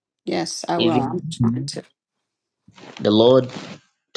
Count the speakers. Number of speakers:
2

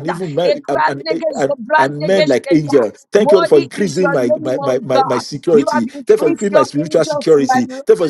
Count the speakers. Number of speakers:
2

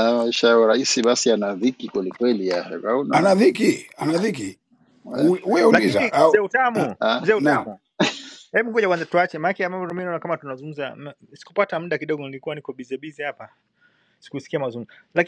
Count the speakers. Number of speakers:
3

